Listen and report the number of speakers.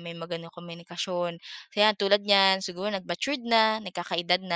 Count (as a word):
one